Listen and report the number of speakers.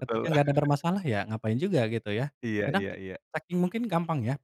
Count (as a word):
two